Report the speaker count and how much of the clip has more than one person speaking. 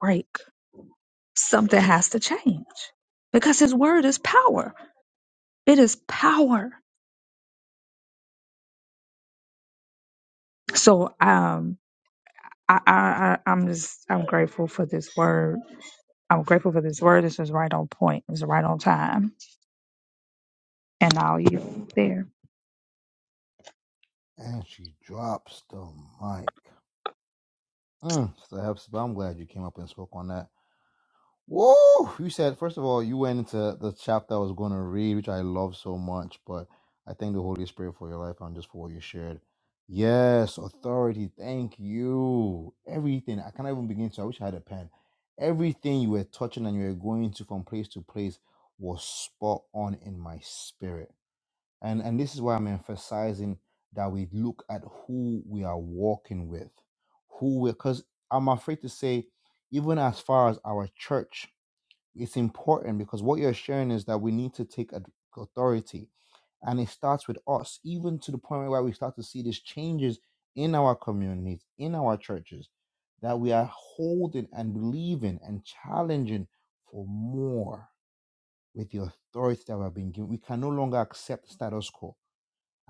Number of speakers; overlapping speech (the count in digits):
2, no overlap